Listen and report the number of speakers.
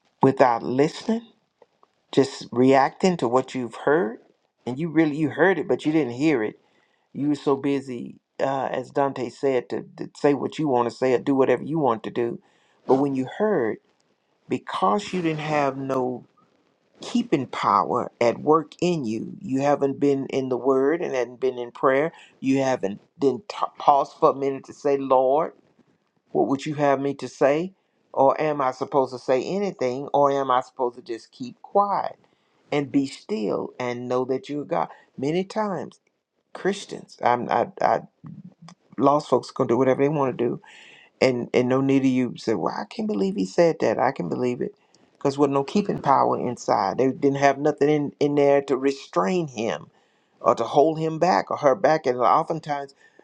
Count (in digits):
1